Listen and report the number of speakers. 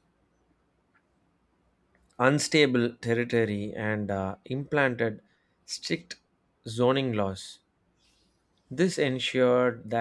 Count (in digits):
1